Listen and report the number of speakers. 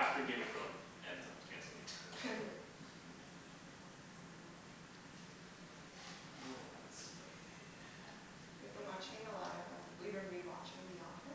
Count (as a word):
two